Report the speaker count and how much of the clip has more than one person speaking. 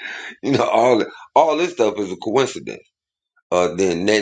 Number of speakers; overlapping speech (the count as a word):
one, no overlap